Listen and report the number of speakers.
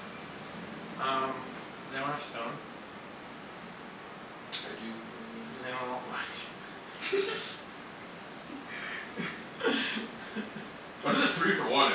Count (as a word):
two